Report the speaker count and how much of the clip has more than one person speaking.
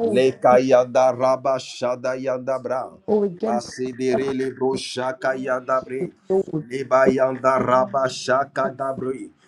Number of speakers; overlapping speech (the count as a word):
two, about 5%